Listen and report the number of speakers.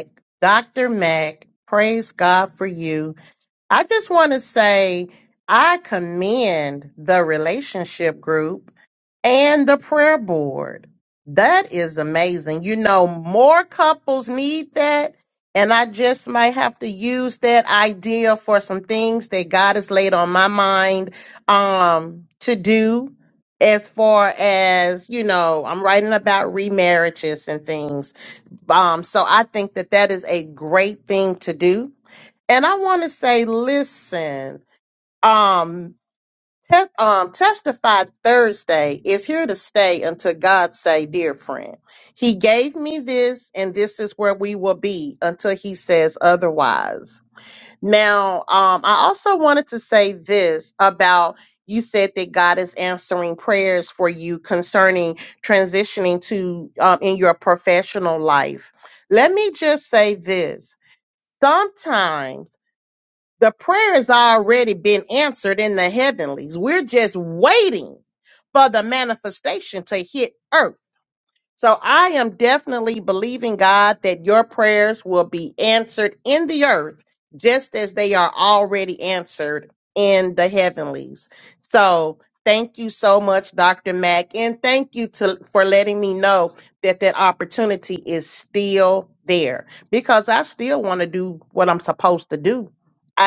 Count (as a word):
one